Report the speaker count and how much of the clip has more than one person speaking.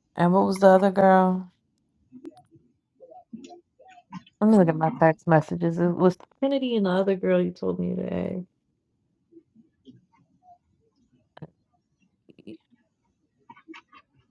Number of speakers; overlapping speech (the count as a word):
one, no overlap